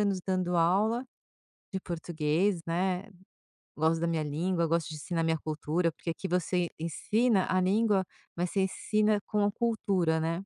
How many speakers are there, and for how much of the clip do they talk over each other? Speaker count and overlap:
one, no overlap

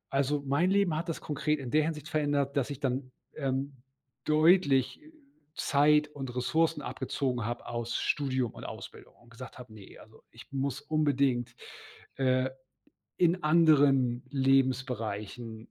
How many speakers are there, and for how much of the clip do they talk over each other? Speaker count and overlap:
one, no overlap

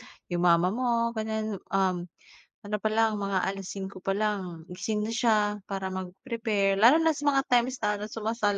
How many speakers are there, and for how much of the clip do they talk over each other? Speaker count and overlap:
one, no overlap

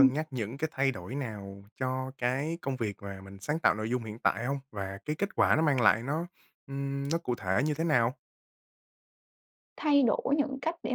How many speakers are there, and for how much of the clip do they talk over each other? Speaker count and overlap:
two, about 1%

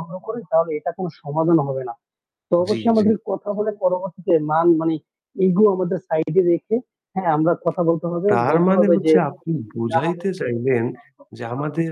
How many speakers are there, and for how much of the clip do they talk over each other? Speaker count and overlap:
two, about 18%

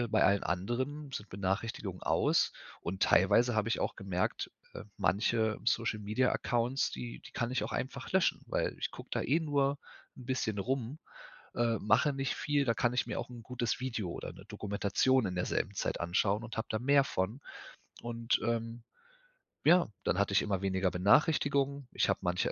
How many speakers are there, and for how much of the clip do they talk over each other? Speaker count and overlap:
one, no overlap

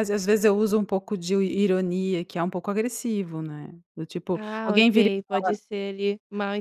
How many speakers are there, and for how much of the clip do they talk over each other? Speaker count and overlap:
two, about 18%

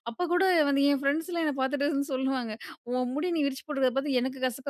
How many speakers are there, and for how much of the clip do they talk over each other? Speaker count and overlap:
one, no overlap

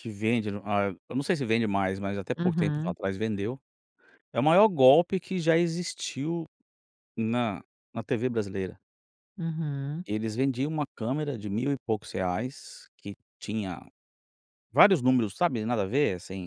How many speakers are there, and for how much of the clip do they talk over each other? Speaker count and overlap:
two, about 3%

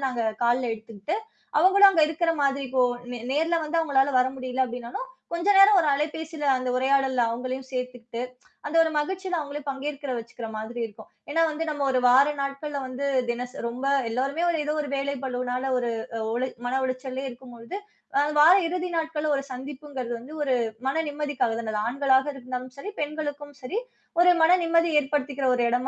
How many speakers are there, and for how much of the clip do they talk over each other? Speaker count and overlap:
one, no overlap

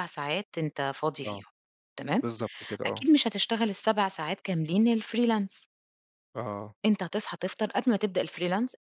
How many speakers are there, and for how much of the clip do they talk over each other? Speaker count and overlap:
two, about 4%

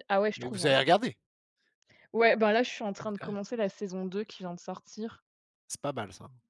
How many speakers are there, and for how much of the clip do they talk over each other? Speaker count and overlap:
two, about 7%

